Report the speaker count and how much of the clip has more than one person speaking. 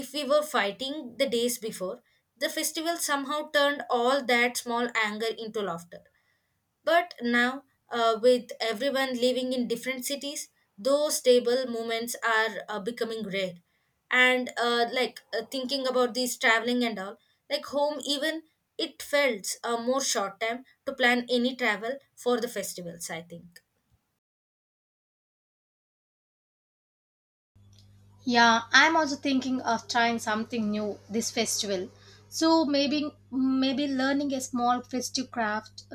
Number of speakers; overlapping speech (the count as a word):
two, no overlap